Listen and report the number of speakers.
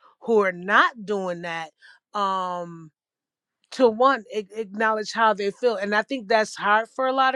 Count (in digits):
1